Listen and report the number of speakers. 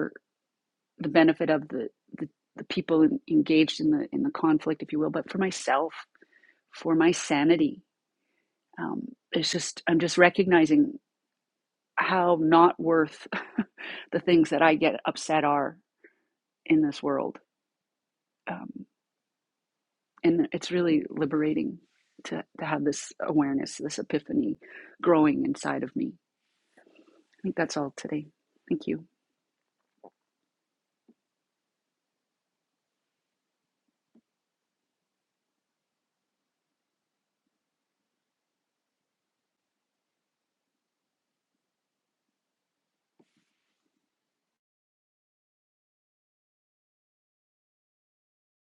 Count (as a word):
one